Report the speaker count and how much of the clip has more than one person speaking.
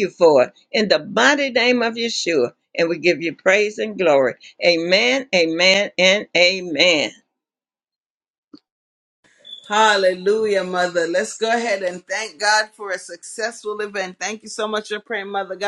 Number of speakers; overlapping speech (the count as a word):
two, no overlap